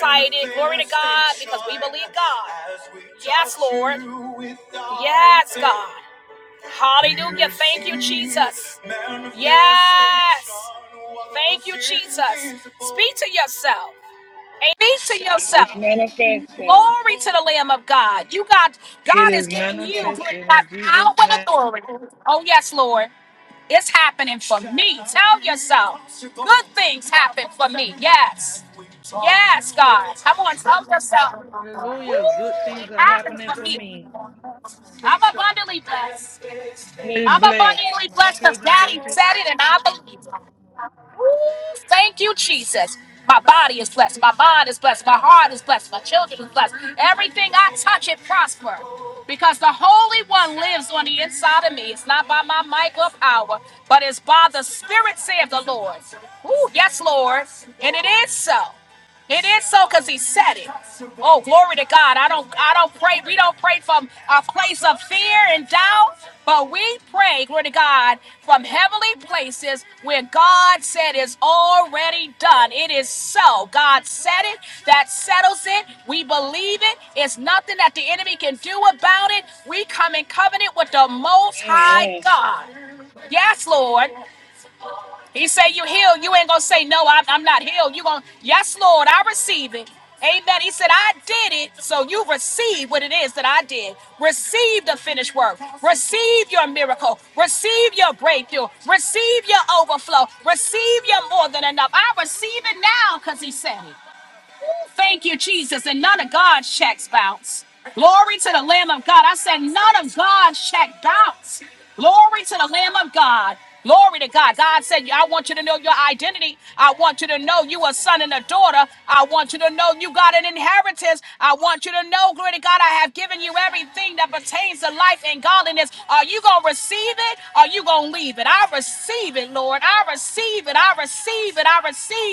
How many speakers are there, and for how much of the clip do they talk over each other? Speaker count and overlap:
2, about 5%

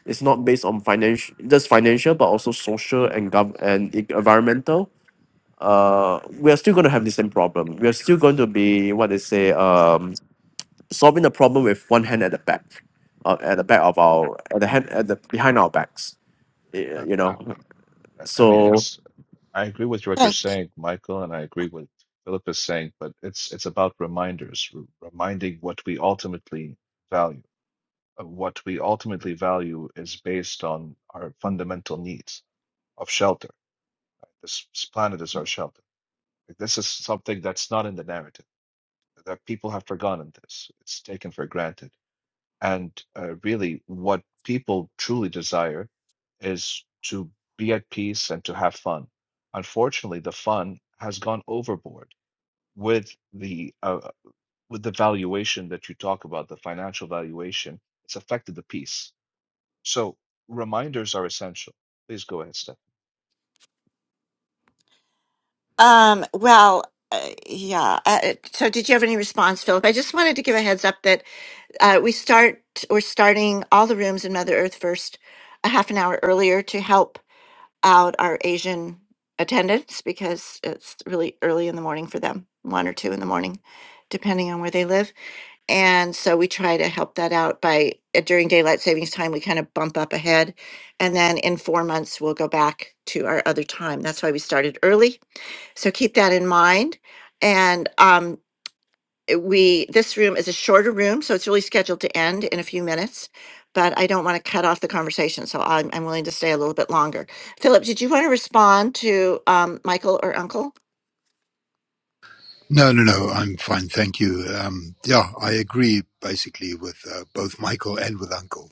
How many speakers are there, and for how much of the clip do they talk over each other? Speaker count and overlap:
4, about 1%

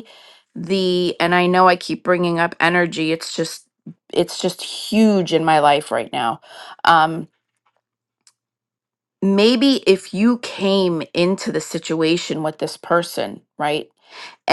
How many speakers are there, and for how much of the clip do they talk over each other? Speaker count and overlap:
1, no overlap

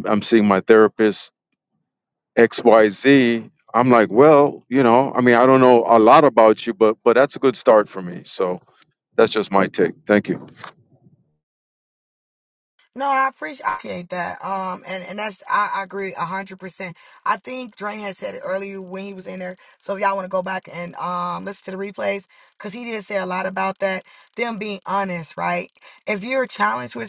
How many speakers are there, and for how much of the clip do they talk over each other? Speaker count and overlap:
2, no overlap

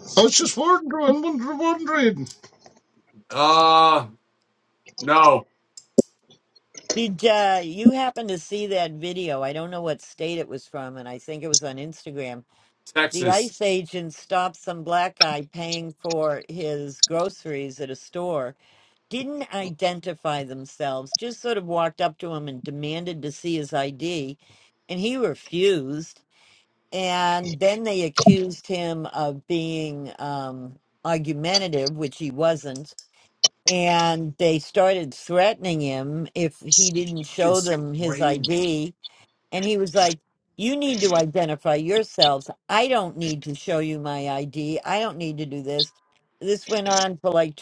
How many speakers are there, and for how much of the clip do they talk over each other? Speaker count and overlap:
3, about 2%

